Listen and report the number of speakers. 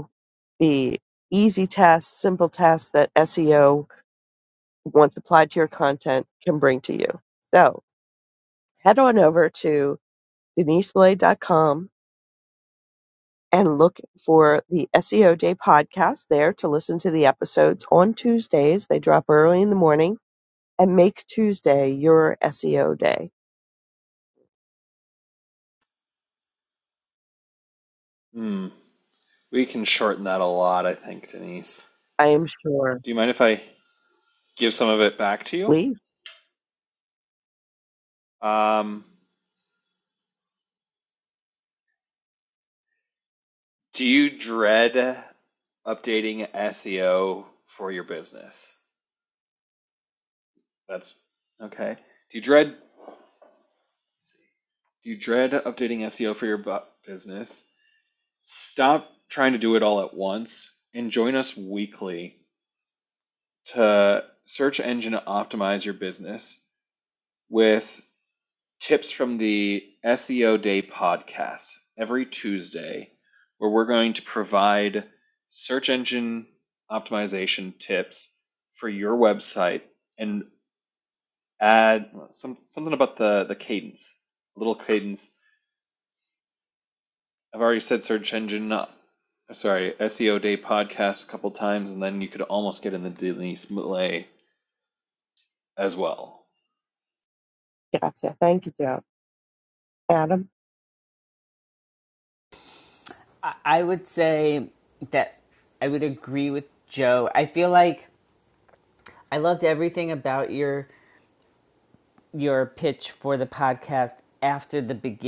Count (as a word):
three